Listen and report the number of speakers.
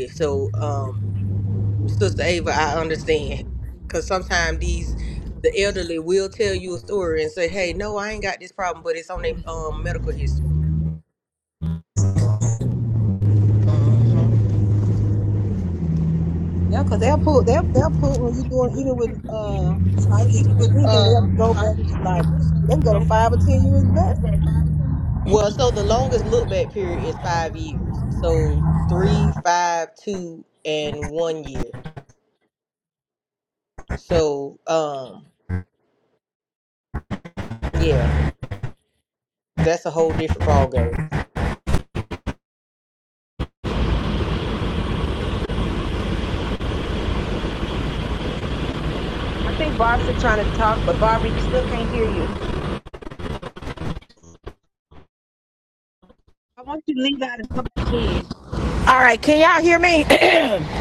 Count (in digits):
4